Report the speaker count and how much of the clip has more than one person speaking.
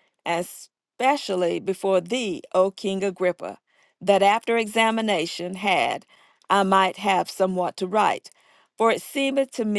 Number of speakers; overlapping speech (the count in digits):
1, no overlap